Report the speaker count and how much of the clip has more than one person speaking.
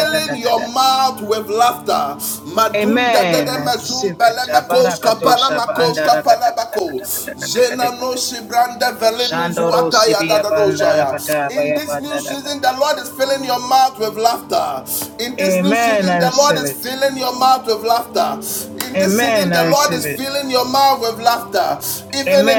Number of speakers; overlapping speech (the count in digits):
2, about 30%